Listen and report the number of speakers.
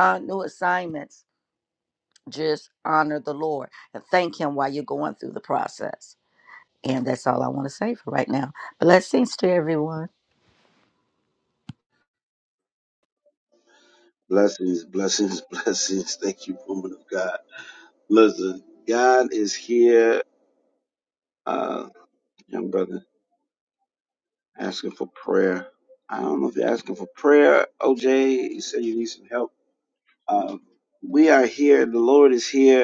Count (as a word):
two